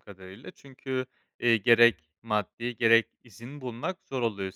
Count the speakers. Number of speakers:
one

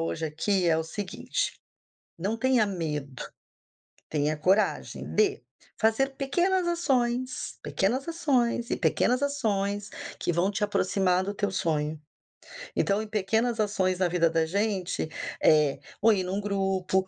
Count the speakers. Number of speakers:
one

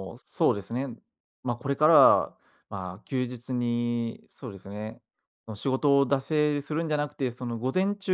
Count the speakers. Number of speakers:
one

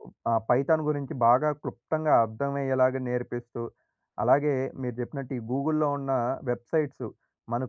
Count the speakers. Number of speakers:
one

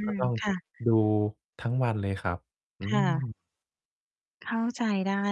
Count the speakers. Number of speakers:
two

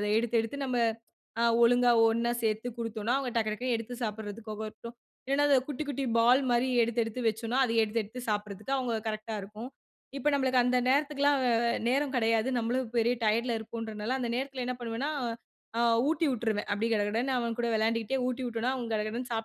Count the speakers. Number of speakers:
one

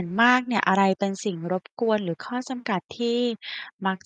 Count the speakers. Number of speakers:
one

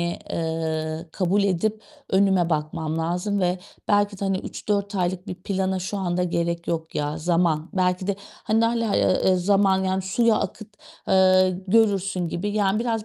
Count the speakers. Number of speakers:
one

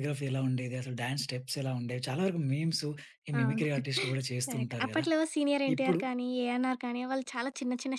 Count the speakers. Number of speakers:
two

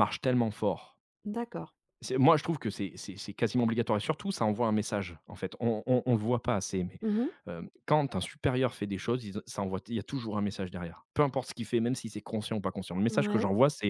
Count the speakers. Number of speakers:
two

